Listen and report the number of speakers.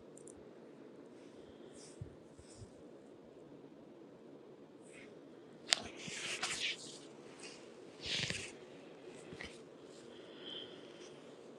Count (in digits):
0